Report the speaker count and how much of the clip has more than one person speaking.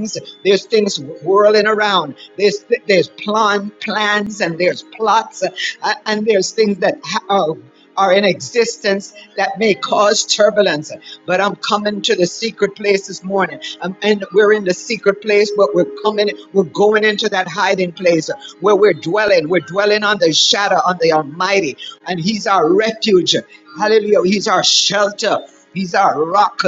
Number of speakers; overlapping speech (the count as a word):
one, no overlap